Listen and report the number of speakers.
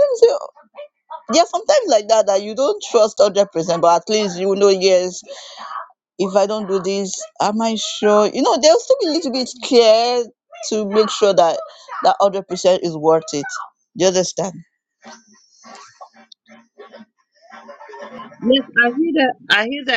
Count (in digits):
2